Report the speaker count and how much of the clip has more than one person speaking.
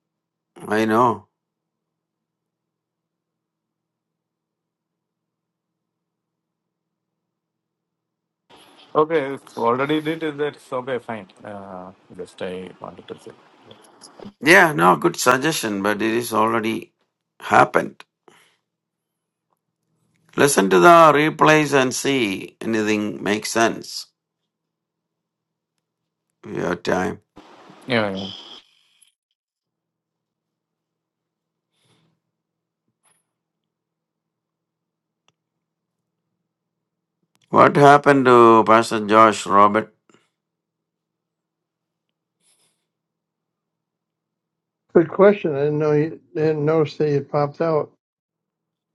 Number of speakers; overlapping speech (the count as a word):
three, no overlap